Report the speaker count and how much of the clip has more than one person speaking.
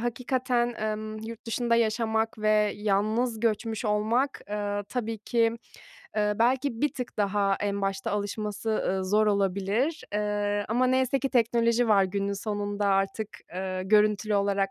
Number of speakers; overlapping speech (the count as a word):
one, no overlap